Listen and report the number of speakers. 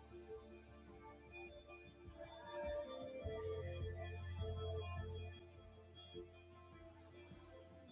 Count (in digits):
0